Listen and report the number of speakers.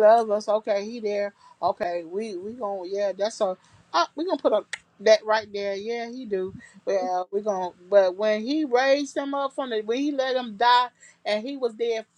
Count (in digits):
1